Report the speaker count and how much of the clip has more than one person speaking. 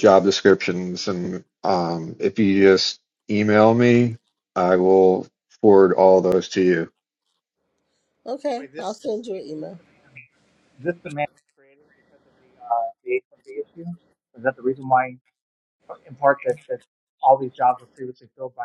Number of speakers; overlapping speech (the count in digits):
3, under 1%